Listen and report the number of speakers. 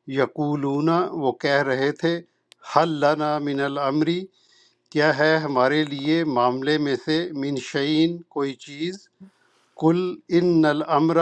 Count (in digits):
1